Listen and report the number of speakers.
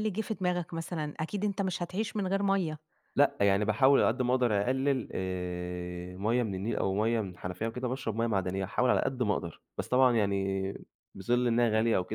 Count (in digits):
2